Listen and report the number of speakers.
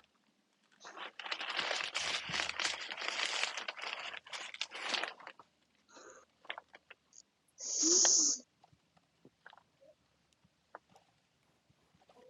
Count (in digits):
0